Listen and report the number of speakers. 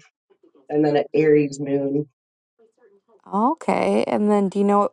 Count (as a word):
two